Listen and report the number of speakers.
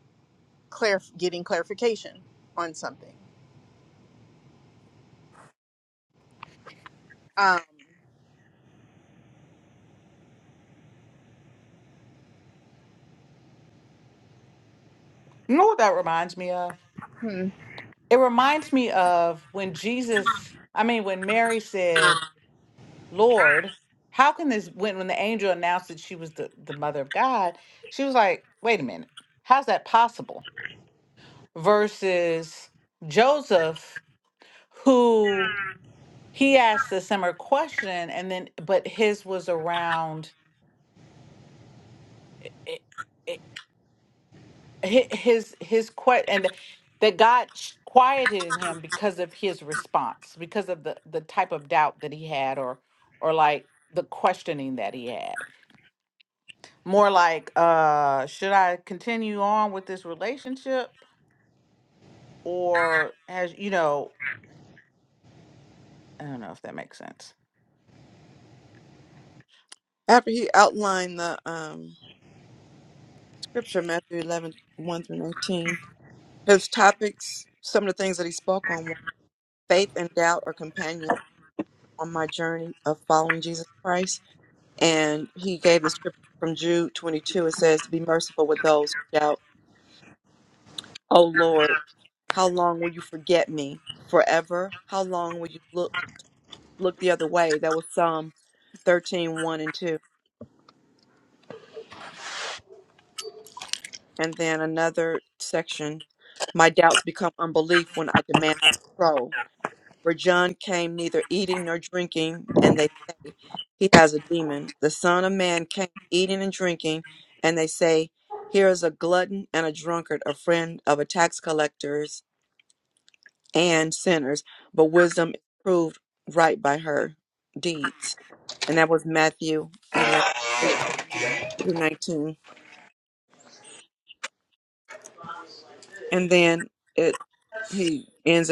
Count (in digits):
3